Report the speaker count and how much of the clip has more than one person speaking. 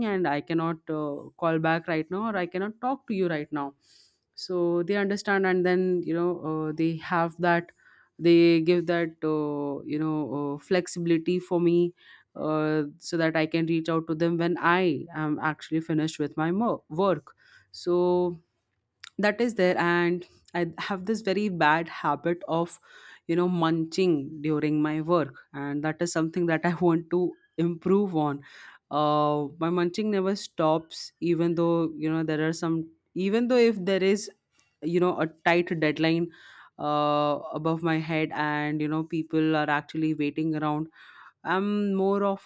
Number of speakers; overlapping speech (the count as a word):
one, no overlap